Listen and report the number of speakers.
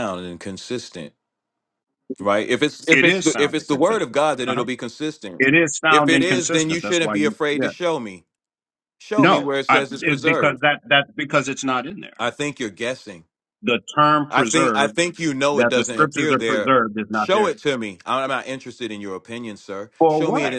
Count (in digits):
2